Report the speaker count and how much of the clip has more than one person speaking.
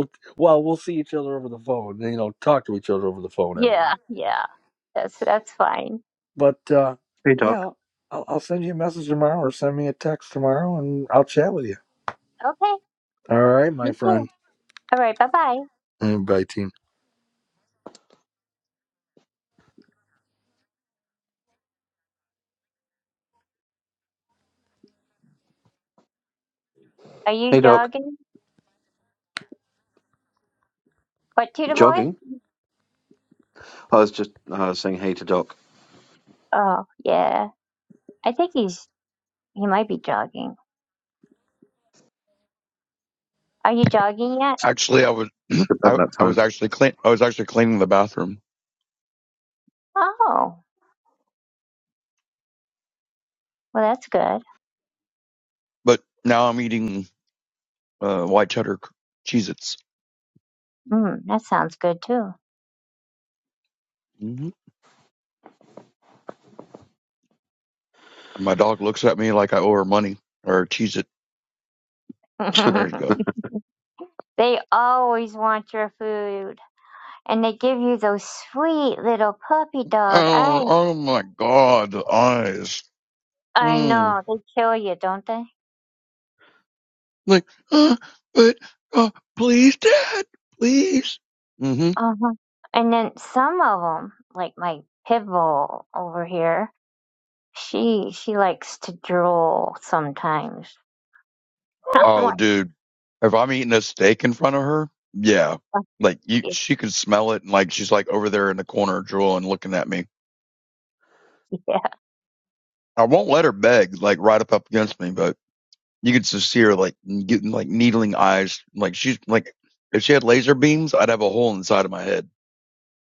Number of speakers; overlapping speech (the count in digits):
4, about 3%